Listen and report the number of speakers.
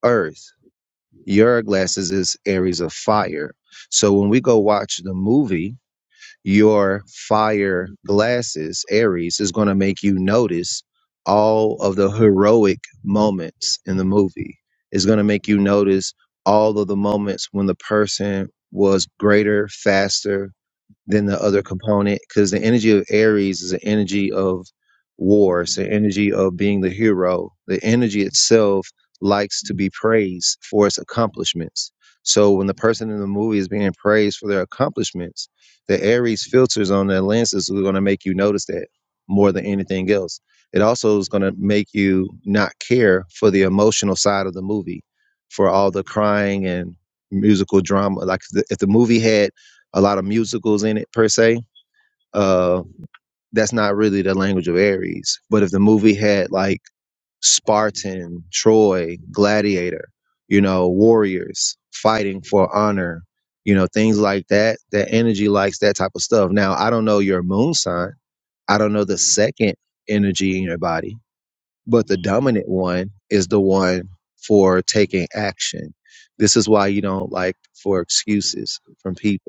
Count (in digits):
1